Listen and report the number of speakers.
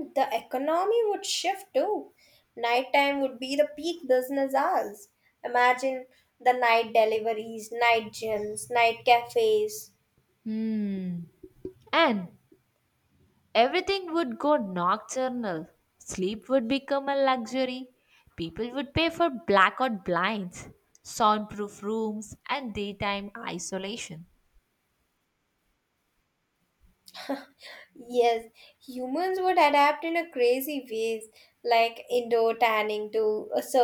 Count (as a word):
two